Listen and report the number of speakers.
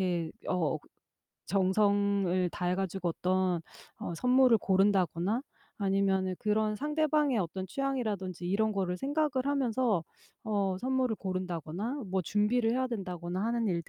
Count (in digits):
1